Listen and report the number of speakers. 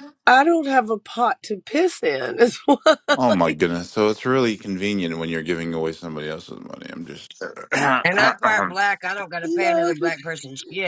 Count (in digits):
3